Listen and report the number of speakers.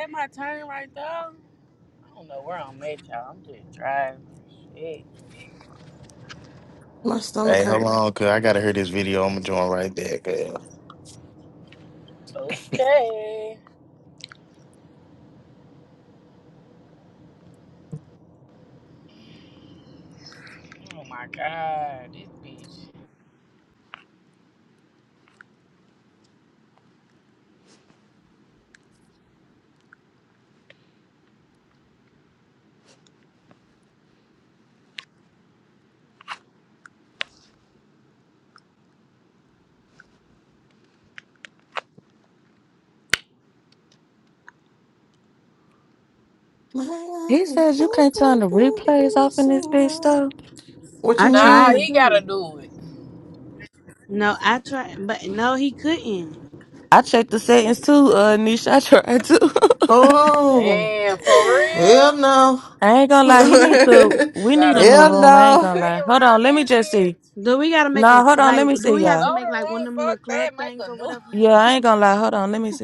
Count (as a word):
five